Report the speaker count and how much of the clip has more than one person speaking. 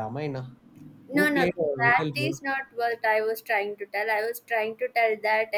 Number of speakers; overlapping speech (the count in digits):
2, about 22%